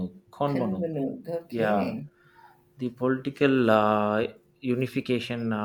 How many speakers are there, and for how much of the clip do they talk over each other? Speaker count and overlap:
2, about 13%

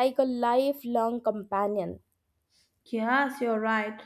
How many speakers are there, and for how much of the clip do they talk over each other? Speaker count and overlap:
2, no overlap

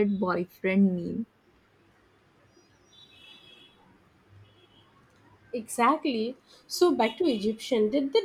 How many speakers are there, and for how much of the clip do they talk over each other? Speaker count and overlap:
2, no overlap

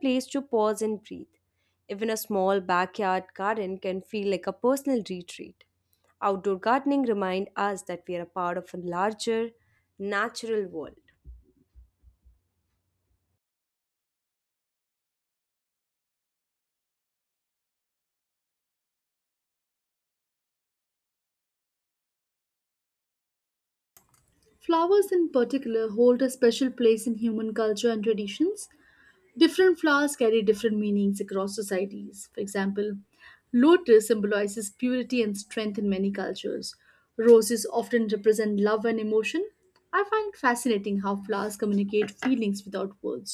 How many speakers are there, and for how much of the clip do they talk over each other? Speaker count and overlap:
2, no overlap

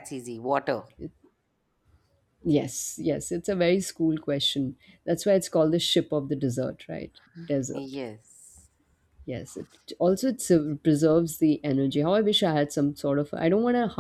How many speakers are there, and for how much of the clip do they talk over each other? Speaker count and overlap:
2, about 2%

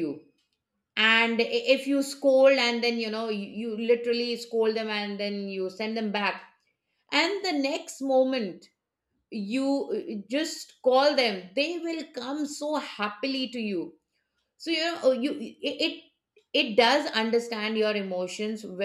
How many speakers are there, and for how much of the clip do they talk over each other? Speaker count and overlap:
1, no overlap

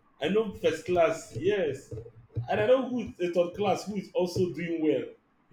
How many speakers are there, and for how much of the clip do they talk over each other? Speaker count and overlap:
1, no overlap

